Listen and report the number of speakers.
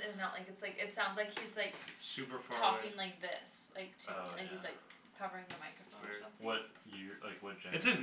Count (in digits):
3